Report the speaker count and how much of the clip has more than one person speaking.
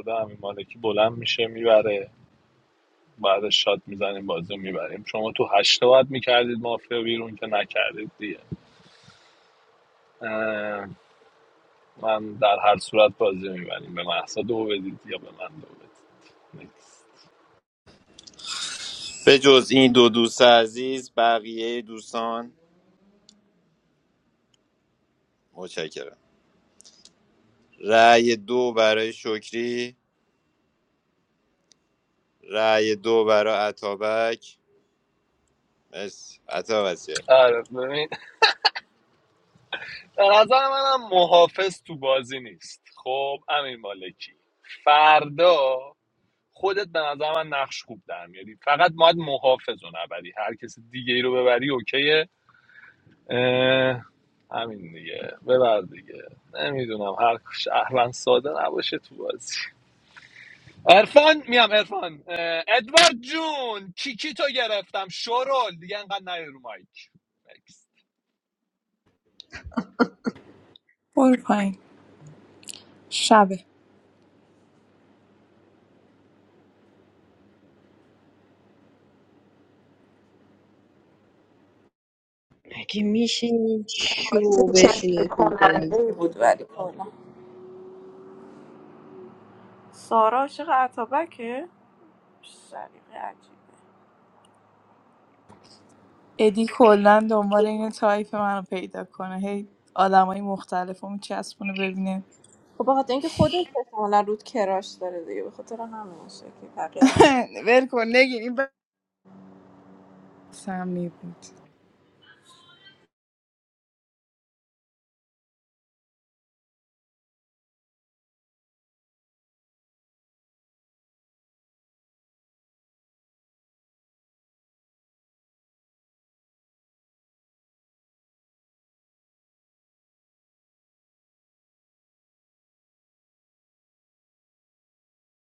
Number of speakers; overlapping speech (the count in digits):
5, no overlap